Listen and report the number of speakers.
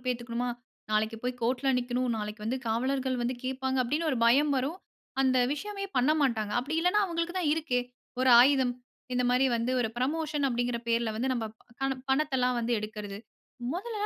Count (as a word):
one